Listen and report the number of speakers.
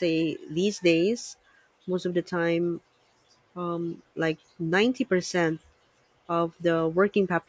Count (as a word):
one